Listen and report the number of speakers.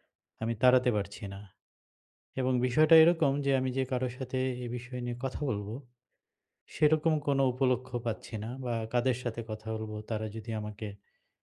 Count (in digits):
1